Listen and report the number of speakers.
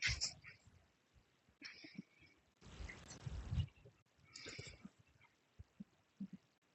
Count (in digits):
0